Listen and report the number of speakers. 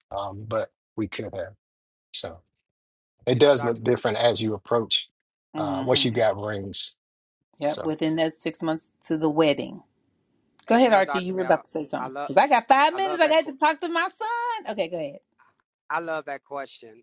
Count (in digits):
3